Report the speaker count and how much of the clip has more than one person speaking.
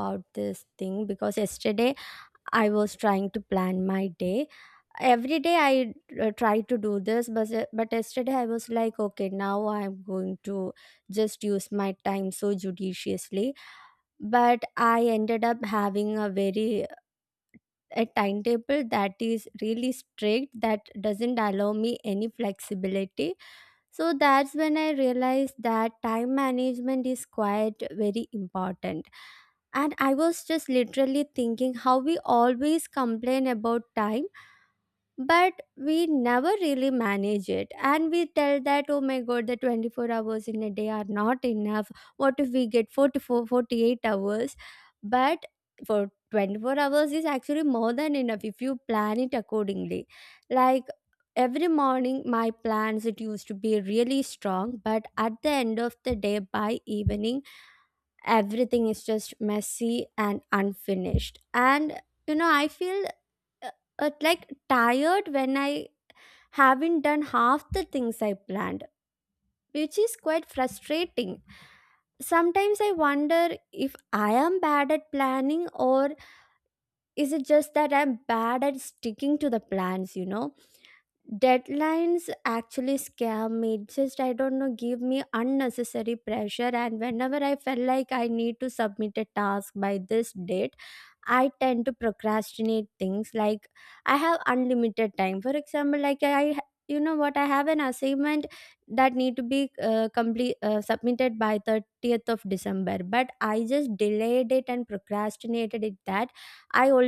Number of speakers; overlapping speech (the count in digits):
1, no overlap